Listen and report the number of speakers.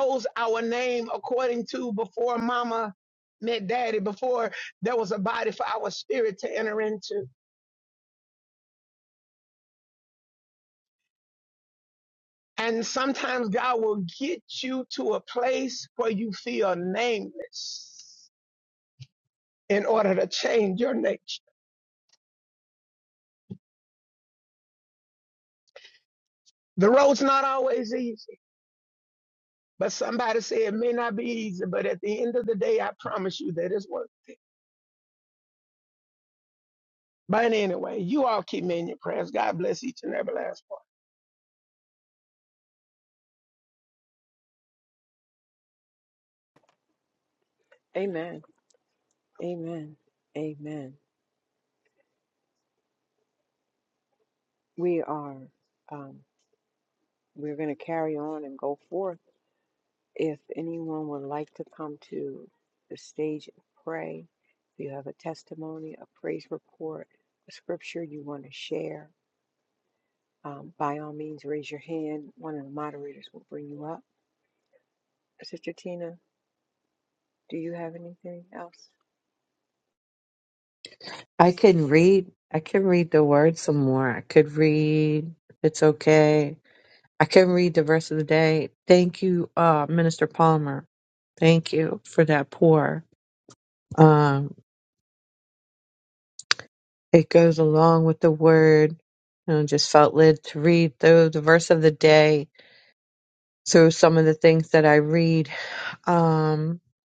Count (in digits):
3